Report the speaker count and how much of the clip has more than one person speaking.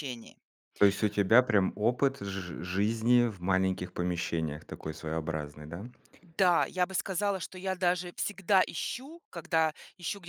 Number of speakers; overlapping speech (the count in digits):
2, no overlap